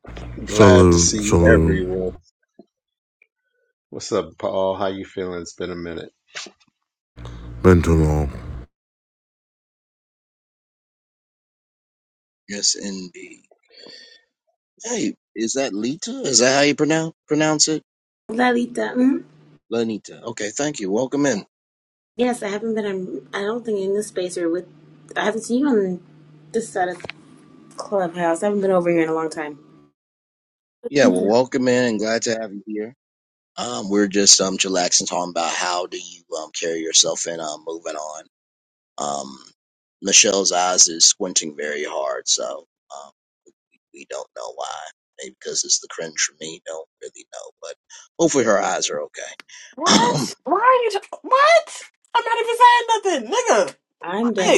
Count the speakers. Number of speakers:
5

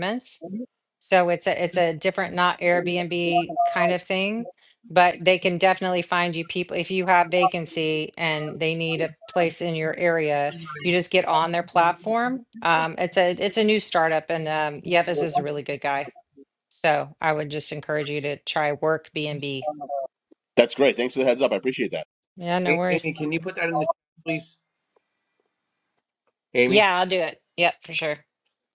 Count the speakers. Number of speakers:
3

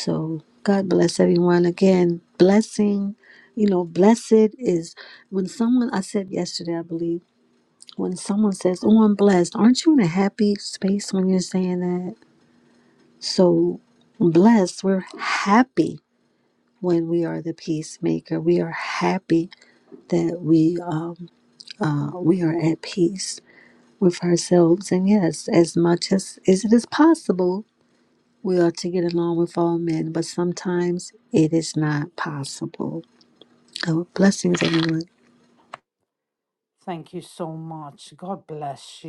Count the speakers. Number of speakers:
2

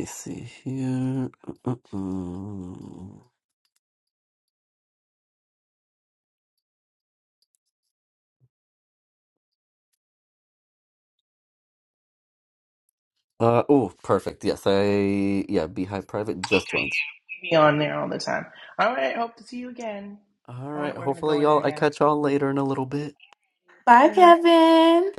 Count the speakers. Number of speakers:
3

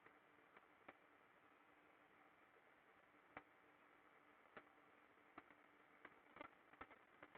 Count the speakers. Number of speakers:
0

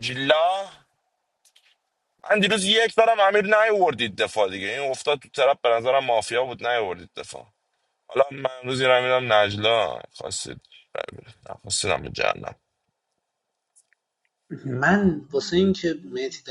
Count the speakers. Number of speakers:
2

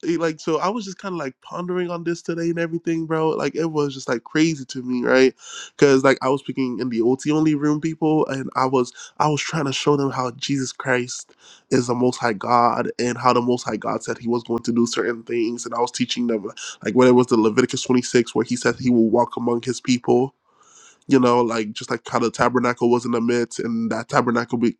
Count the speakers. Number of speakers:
1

